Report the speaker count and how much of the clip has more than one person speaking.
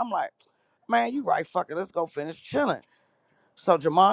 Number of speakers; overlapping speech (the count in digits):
1, no overlap